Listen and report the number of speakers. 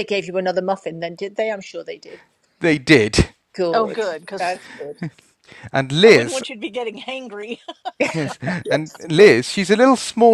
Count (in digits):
3